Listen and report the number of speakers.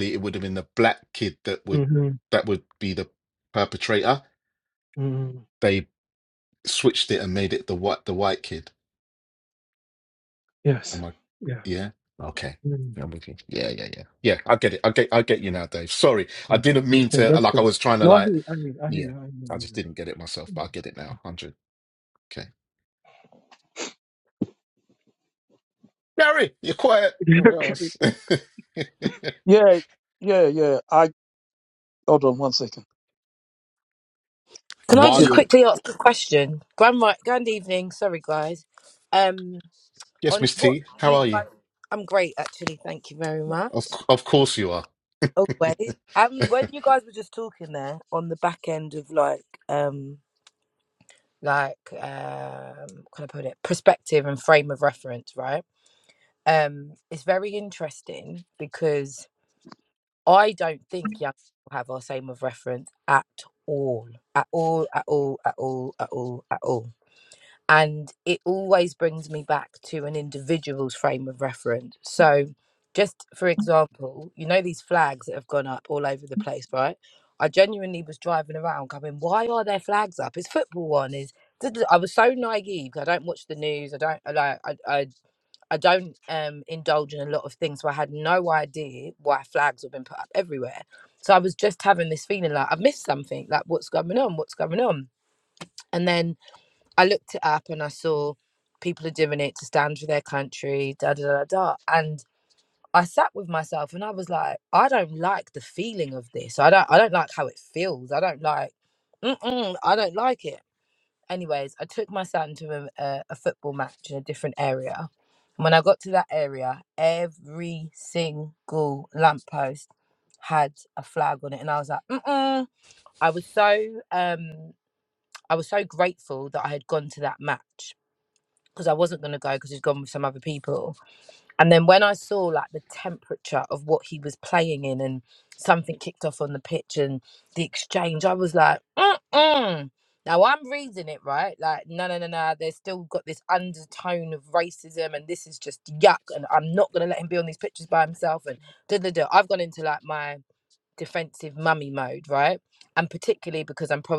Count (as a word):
four